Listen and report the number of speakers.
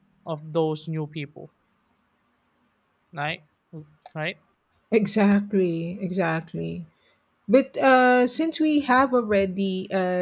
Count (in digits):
2